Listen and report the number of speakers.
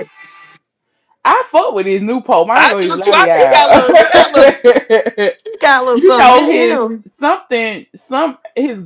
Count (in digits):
2